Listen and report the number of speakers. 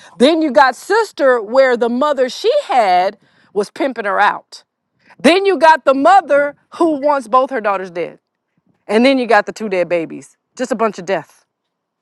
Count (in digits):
1